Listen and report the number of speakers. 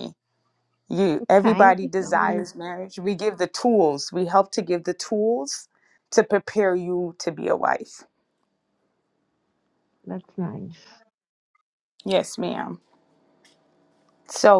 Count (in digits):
2